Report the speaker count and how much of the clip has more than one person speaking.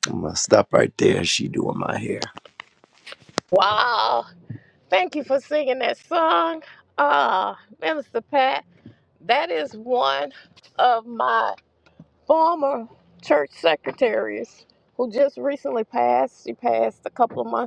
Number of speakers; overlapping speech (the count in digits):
2, no overlap